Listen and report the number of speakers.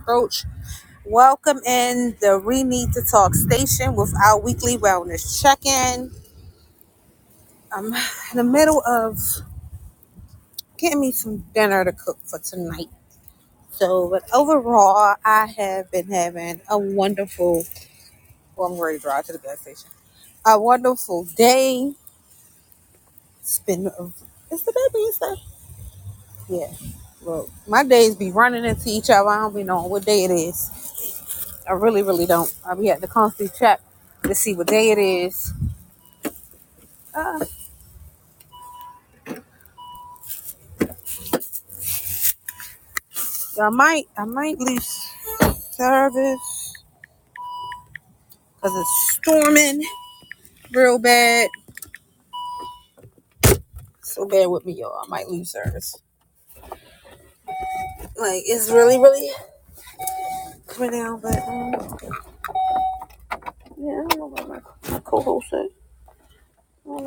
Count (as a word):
one